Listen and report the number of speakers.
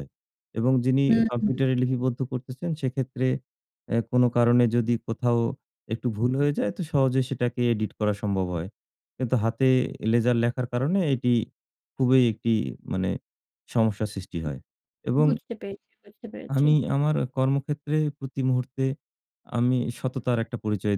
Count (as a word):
two